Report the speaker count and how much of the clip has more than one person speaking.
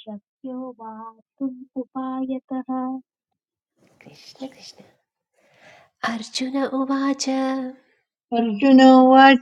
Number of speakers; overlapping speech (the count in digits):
3, no overlap